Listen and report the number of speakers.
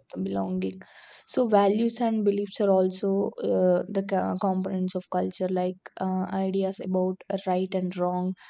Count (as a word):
one